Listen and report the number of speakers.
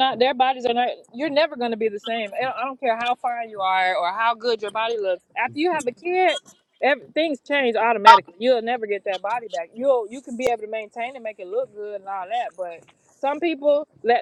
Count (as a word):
one